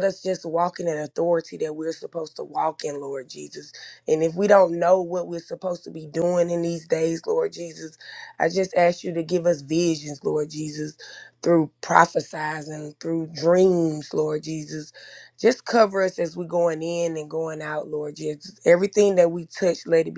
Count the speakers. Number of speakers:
1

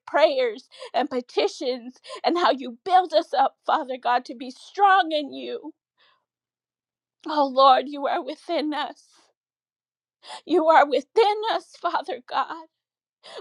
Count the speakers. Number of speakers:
1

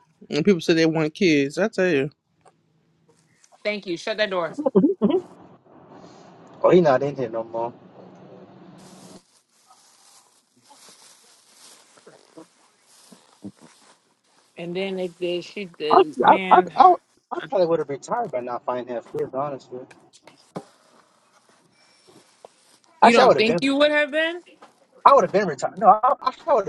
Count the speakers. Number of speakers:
3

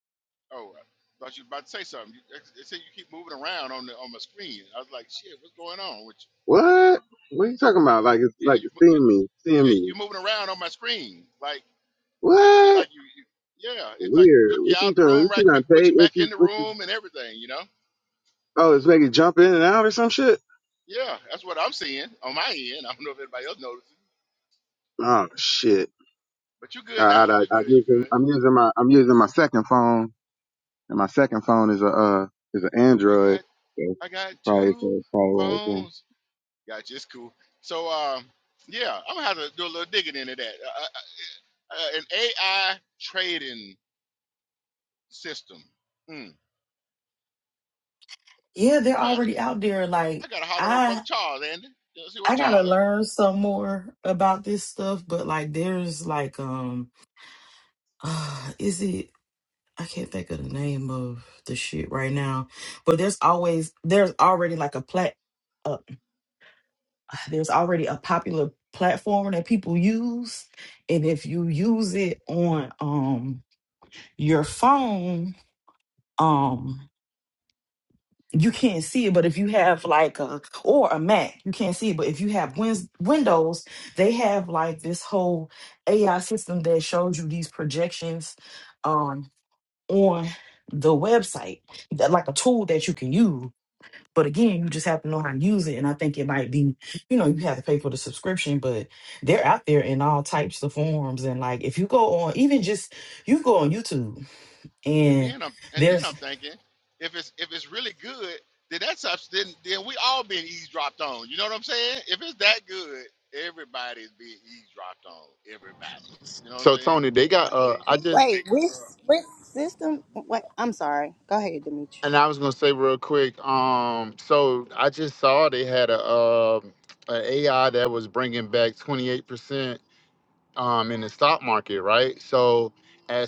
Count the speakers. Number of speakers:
5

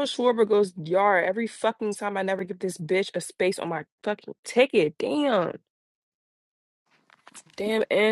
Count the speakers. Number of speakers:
1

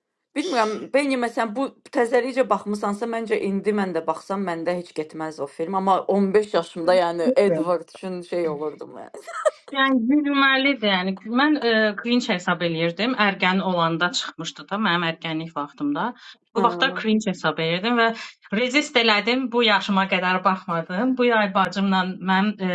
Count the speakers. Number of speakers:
2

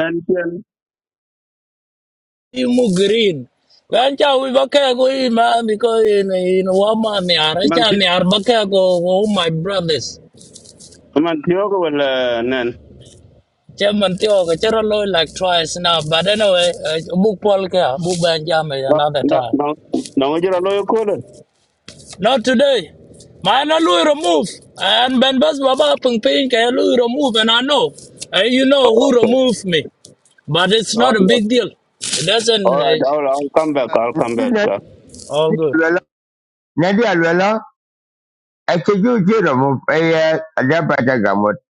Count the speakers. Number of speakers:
3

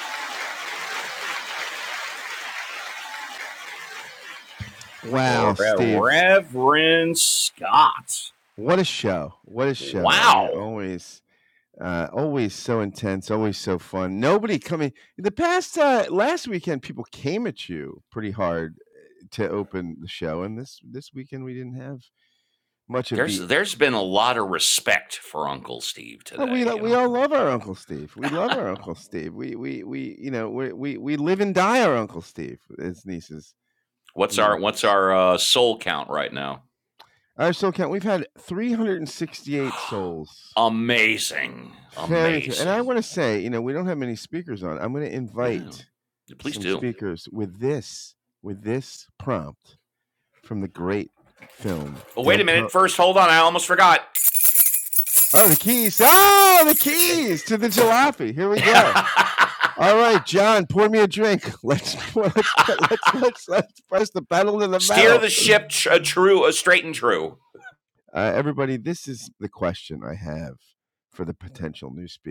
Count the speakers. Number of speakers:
2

